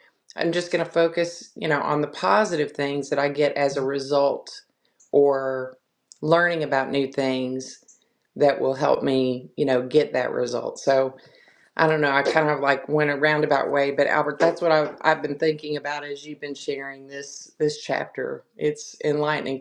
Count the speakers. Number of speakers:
1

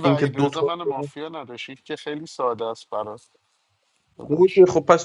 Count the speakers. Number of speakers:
2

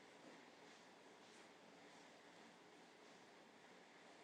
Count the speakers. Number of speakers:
0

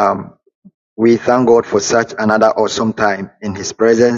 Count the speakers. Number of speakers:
1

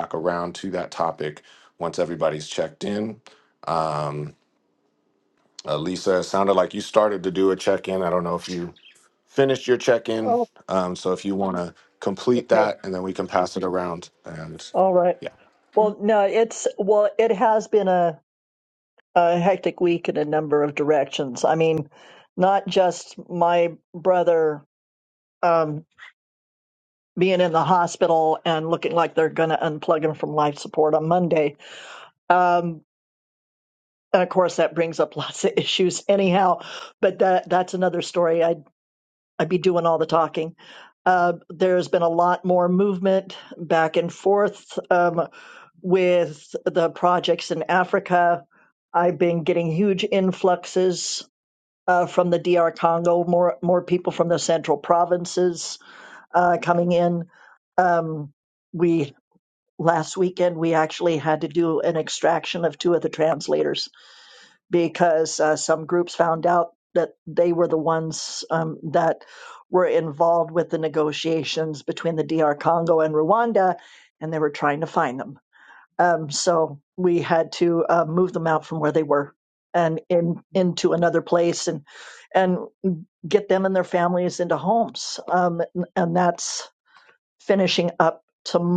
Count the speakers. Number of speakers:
2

